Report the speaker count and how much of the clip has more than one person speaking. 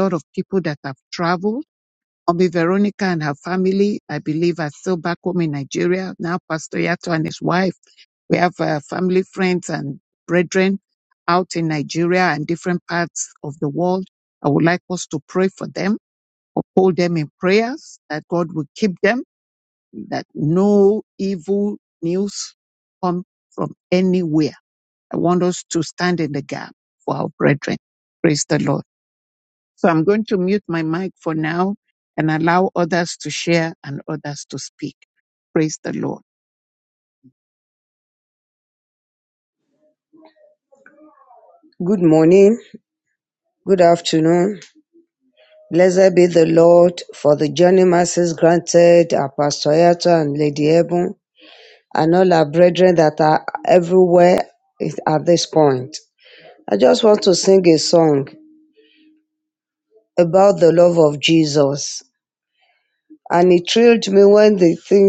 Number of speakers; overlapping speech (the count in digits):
2, no overlap